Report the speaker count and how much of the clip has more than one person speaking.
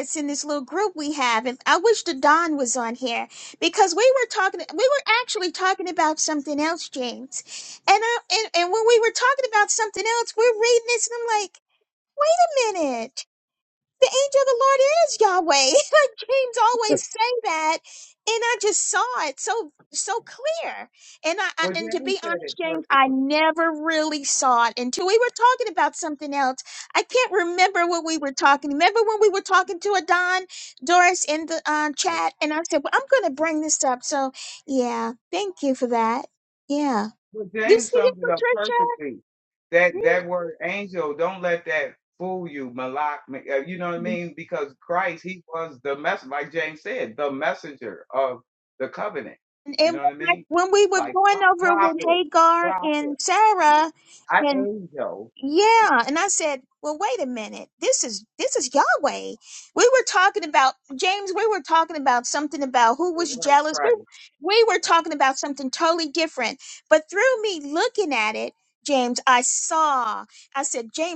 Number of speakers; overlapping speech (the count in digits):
2, about 9%